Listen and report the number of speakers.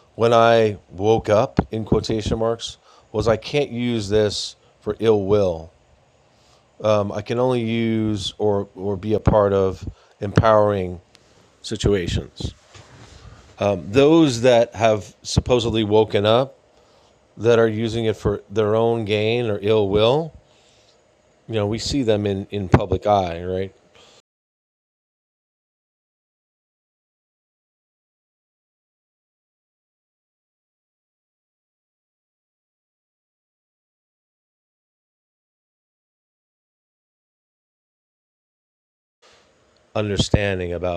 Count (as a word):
one